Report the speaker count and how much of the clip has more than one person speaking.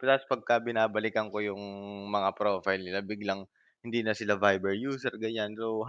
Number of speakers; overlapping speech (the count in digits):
1, no overlap